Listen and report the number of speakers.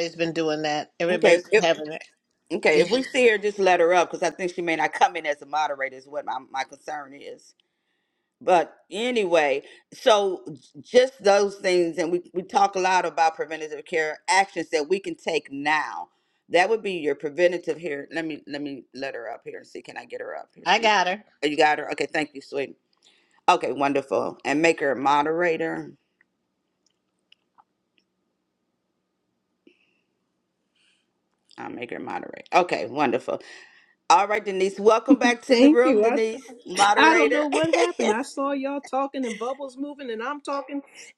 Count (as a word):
three